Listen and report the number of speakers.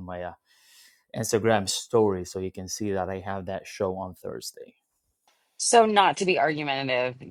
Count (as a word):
two